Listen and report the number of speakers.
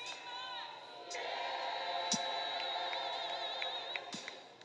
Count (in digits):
0